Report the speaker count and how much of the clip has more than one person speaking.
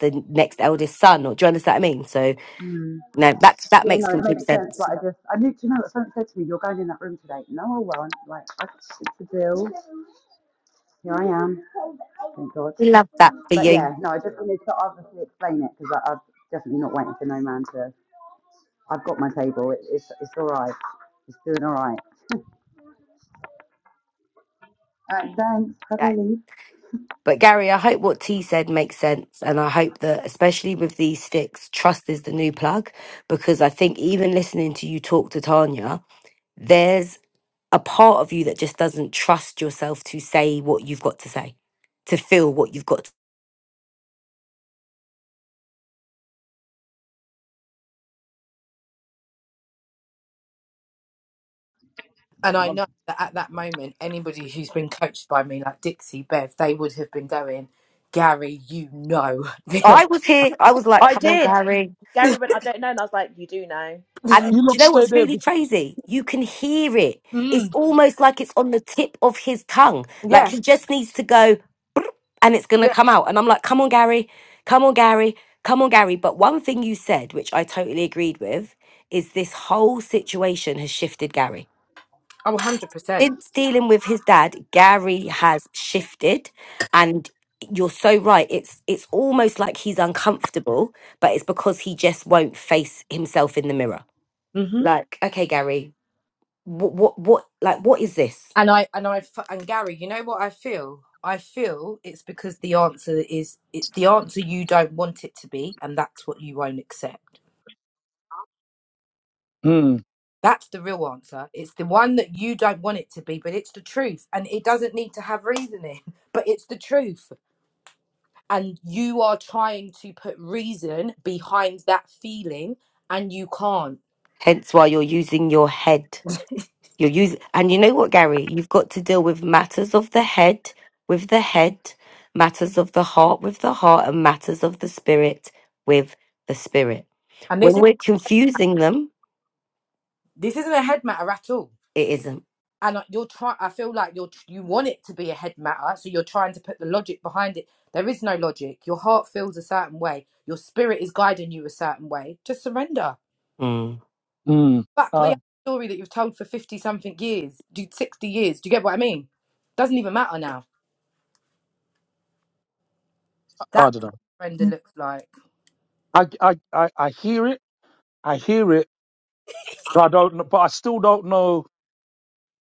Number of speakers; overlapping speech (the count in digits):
5, about 3%